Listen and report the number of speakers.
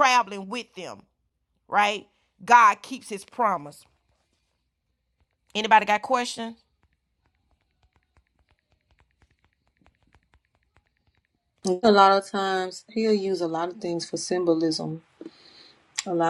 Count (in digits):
2